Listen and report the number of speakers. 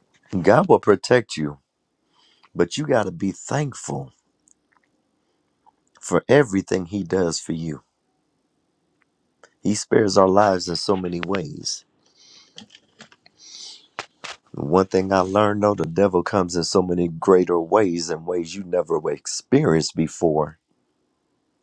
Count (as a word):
one